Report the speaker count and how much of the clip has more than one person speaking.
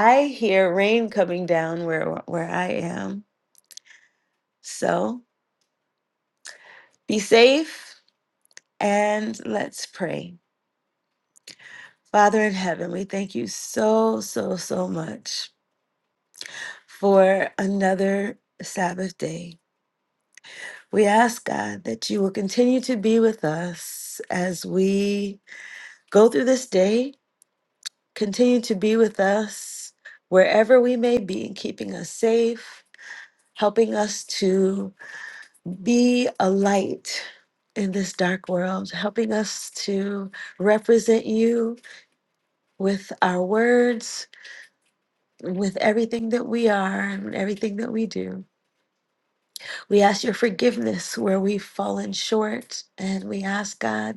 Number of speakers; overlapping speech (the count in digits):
1, no overlap